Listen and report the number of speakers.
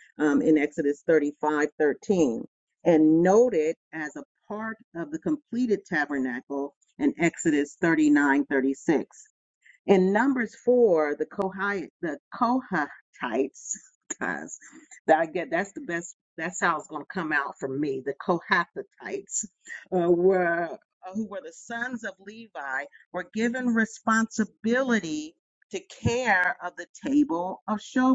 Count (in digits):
1